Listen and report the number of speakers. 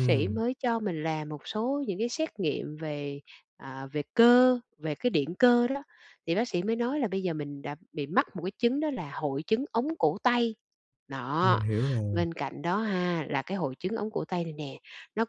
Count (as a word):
two